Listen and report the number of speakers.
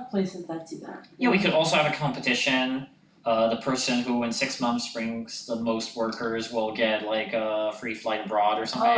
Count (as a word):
two